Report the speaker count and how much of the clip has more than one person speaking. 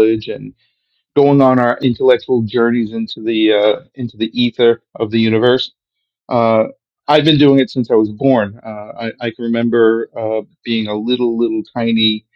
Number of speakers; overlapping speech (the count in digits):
1, no overlap